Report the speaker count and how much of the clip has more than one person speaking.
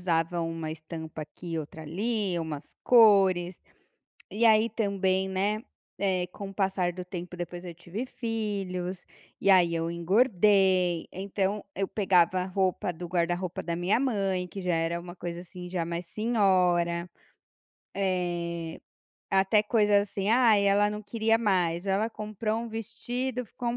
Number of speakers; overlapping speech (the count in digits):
1, no overlap